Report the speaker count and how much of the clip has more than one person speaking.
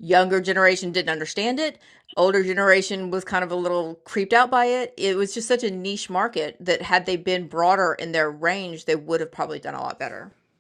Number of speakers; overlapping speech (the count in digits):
1, no overlap